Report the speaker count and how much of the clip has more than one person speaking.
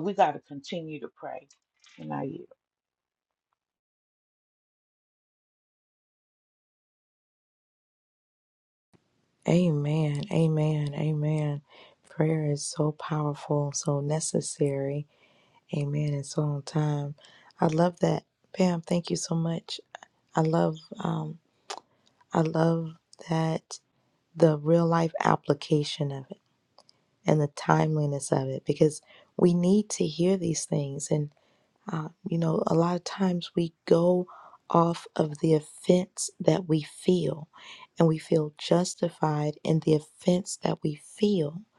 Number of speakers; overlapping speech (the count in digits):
2, no overlap